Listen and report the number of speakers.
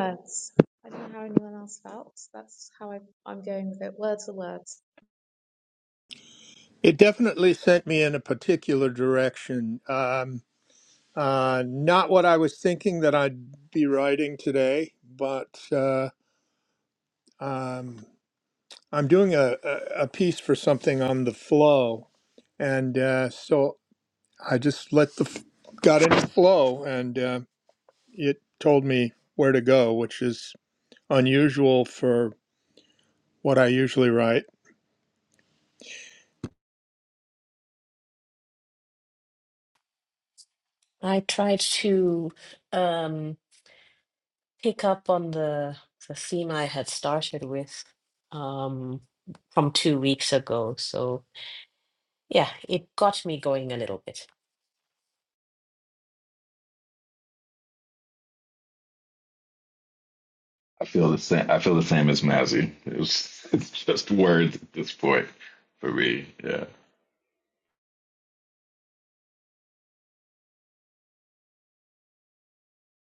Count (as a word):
four